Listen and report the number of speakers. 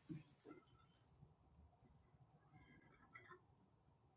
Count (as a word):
zero